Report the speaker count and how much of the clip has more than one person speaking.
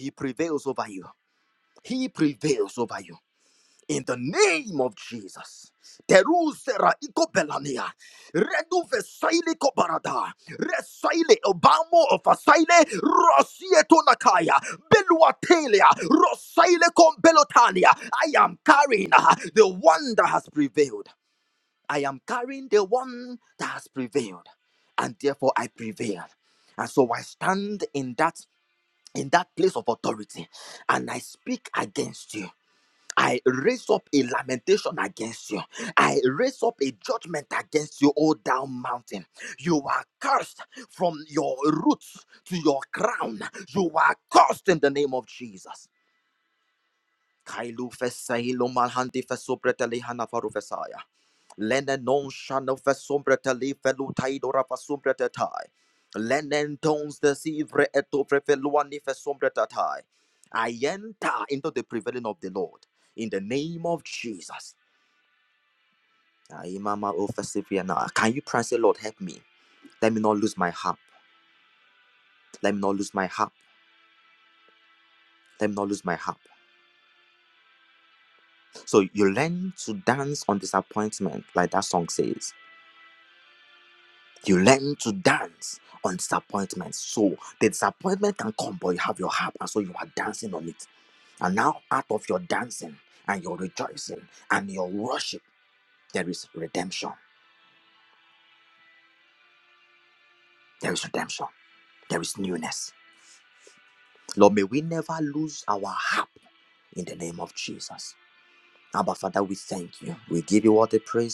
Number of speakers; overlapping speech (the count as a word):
one, no overlap